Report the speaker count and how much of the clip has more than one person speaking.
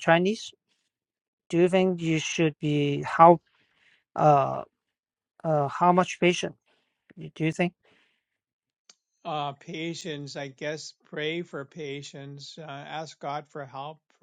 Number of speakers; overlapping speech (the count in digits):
2, no overlap